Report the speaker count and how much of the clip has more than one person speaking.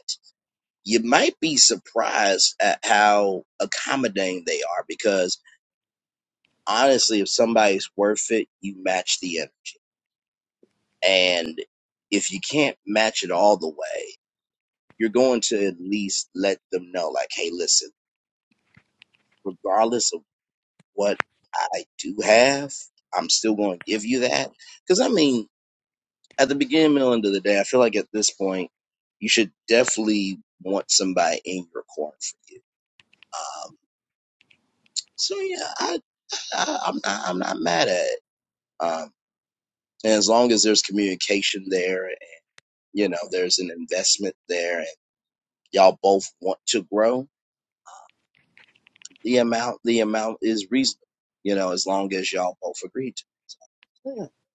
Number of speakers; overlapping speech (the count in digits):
1, no overlap